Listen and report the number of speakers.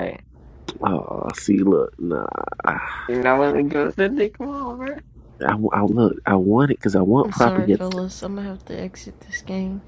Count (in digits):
3